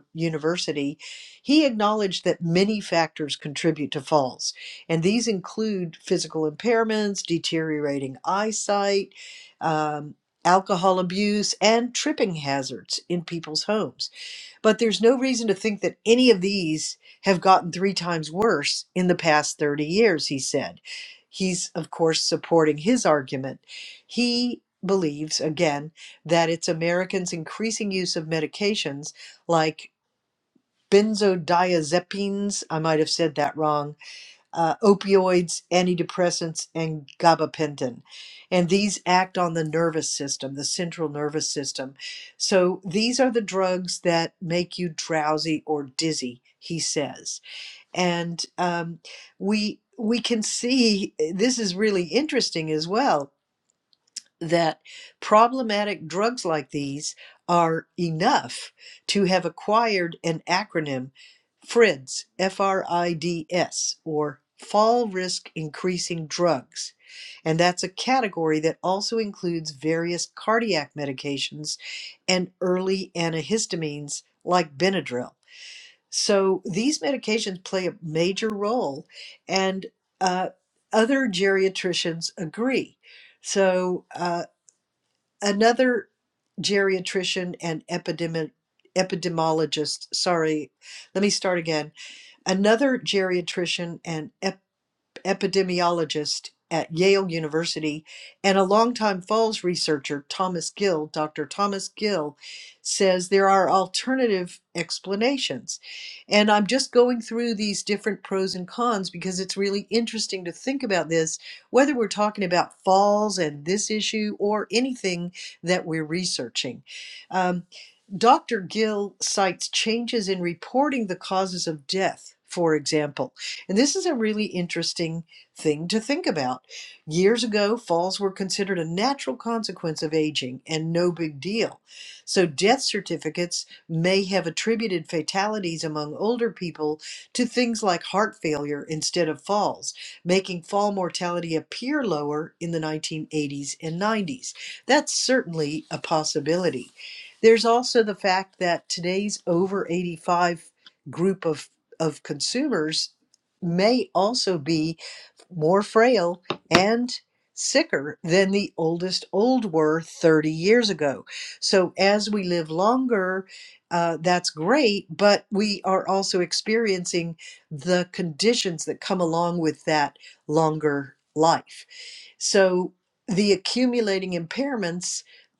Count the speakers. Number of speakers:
1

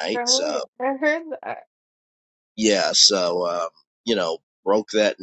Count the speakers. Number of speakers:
2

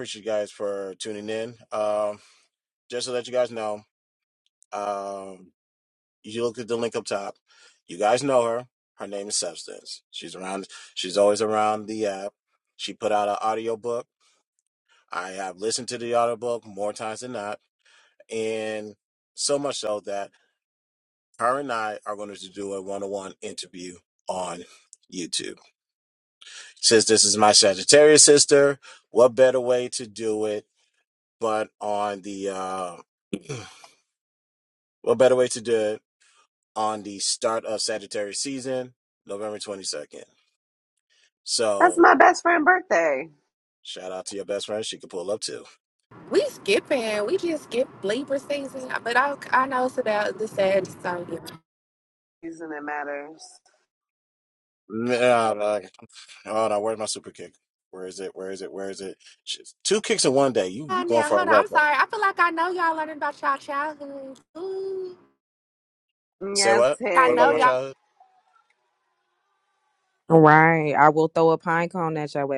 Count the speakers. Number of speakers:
4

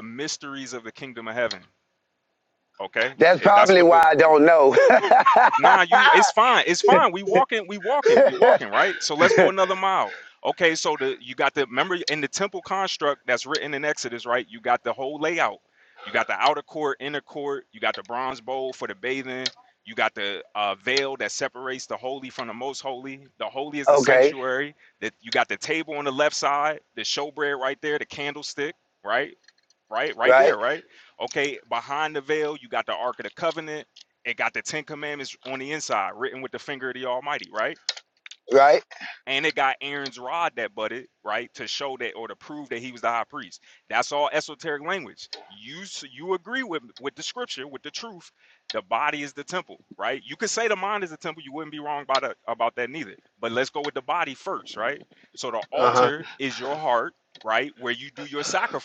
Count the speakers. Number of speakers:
2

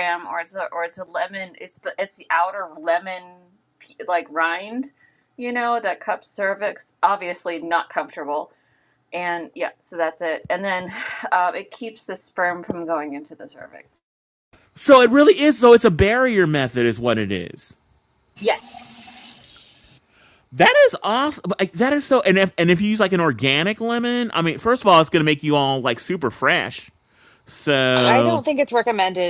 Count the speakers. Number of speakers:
3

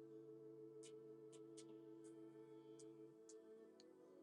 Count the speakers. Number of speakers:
0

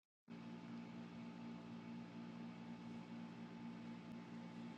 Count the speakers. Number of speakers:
0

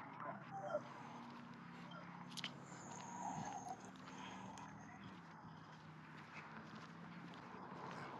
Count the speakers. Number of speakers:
0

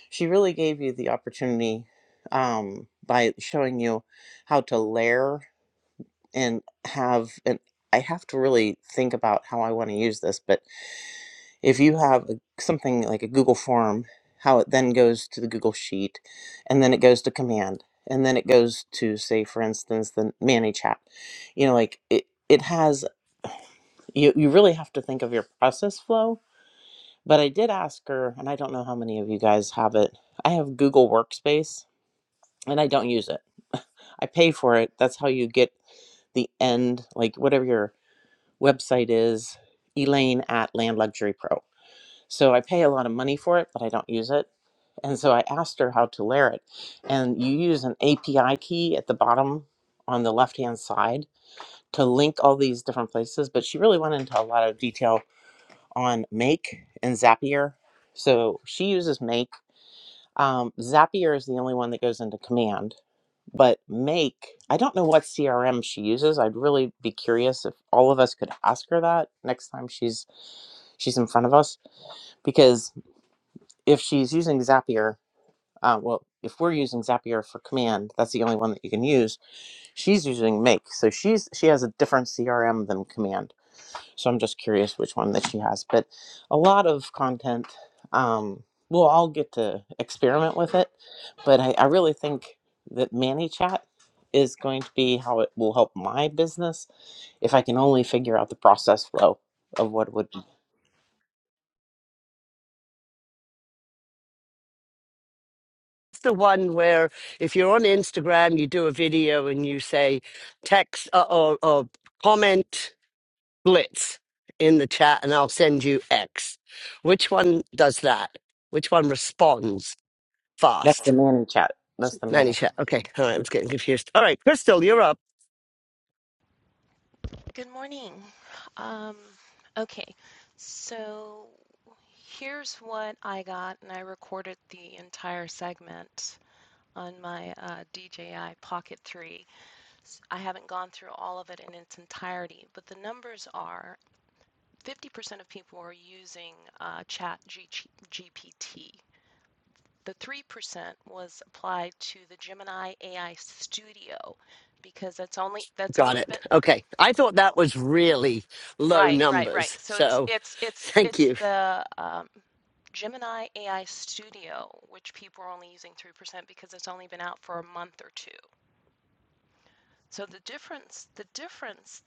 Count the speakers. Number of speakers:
3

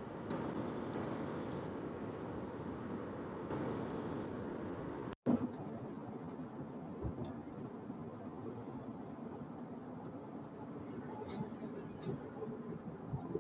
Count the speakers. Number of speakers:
0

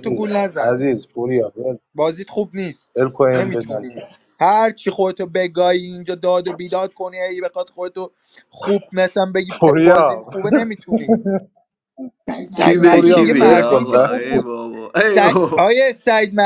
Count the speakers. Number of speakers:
3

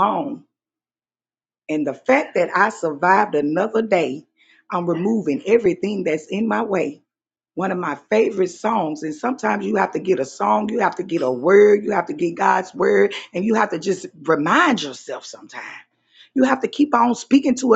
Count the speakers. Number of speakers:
1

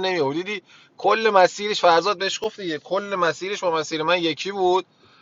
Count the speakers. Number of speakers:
1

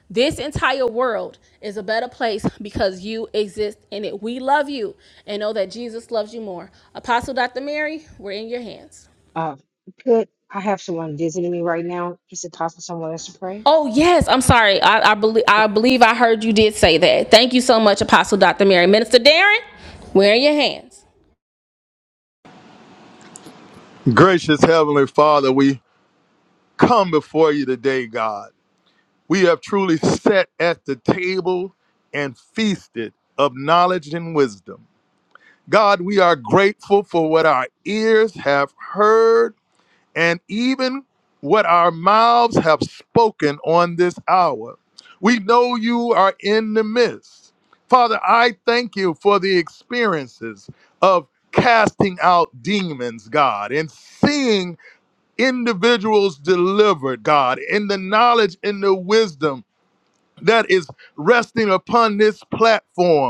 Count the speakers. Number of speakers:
3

